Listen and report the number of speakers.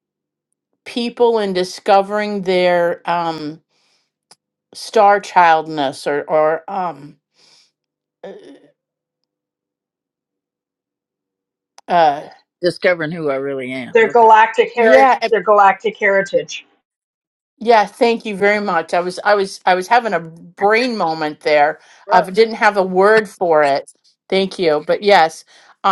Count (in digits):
3